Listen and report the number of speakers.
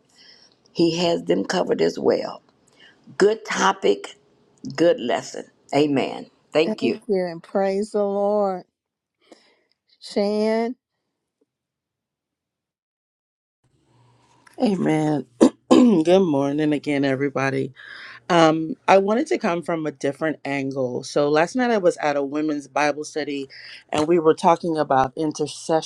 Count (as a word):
three